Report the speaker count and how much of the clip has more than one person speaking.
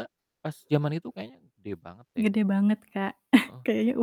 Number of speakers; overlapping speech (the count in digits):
2, about 2%